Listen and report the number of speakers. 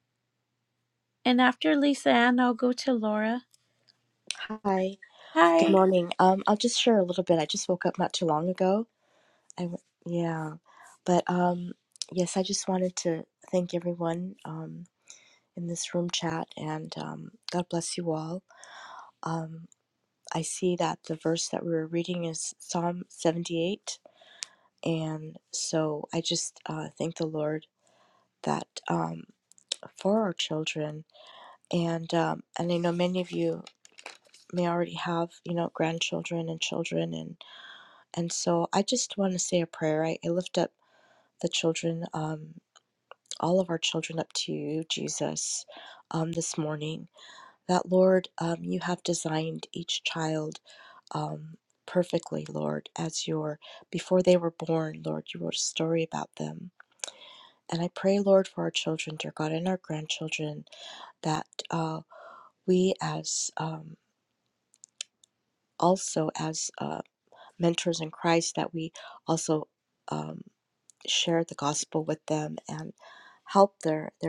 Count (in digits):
2